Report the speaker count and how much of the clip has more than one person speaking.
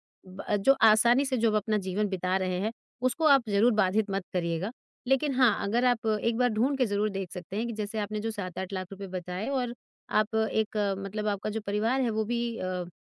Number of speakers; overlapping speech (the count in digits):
1, no overlap